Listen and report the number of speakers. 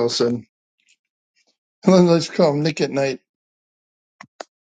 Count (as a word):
one